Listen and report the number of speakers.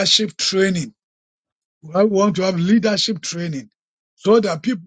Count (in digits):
1